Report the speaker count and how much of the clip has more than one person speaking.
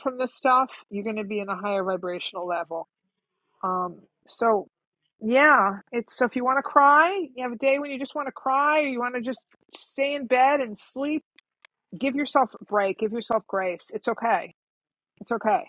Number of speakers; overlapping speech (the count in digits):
1, no overlap